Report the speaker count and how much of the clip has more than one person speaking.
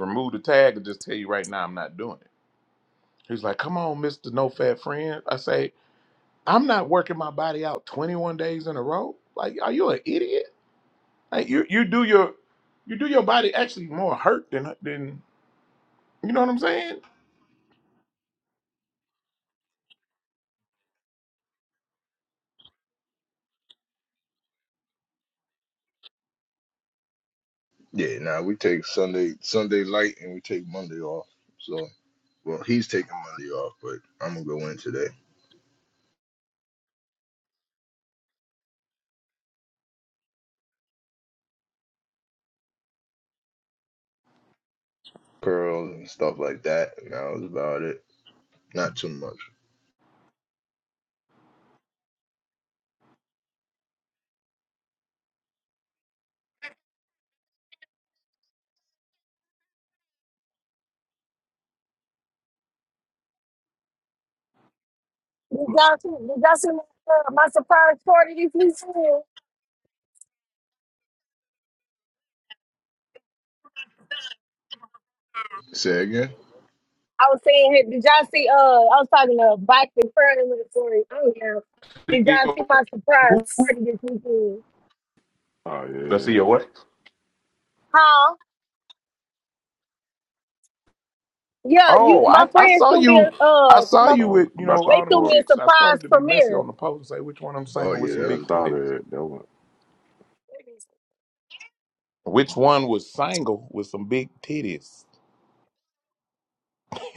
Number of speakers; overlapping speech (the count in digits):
4, about 5%